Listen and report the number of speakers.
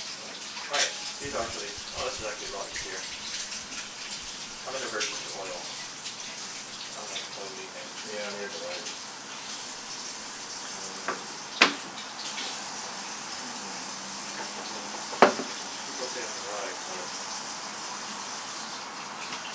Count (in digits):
2